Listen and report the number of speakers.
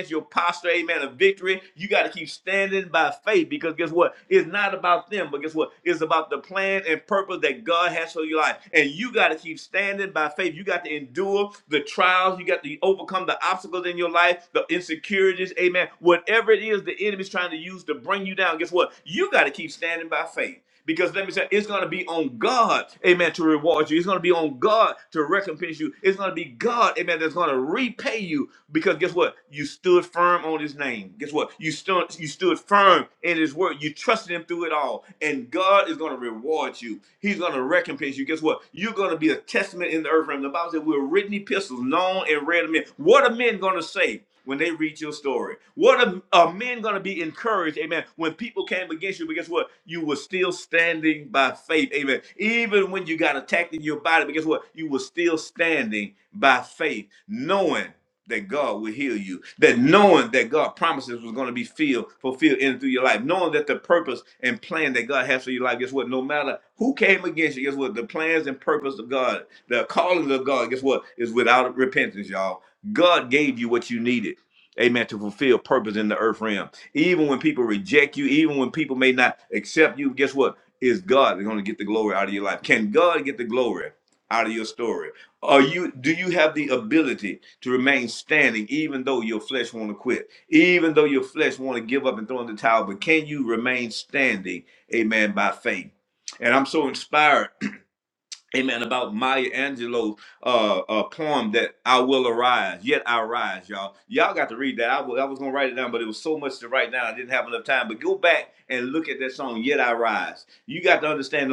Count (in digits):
1